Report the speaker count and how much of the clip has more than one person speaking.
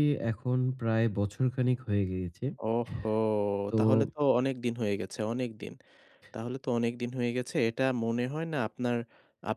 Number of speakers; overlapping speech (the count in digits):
2, under 1%